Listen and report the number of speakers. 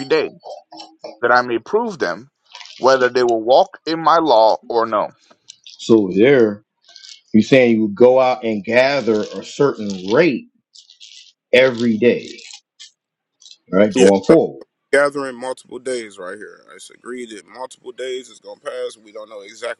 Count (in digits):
3